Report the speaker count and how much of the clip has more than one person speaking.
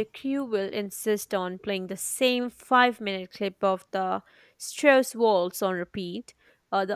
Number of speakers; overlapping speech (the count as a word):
one, no overlap